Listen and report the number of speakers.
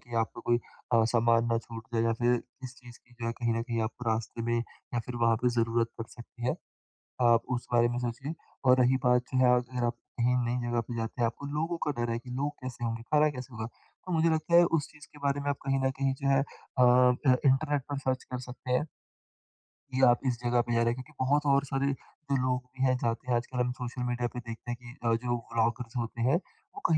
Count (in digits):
1